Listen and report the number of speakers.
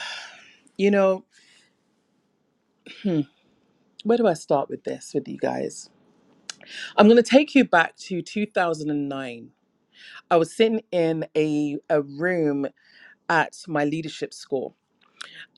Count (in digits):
1